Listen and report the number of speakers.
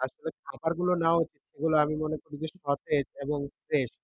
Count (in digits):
1